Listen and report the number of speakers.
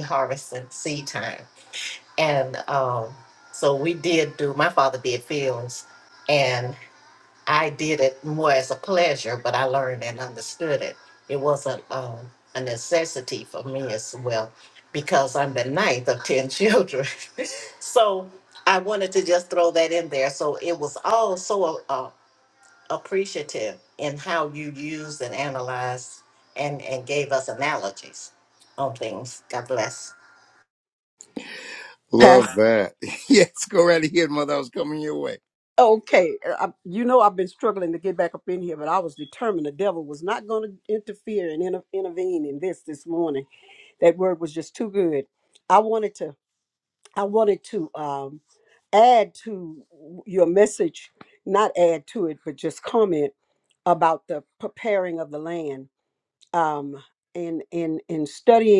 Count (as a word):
three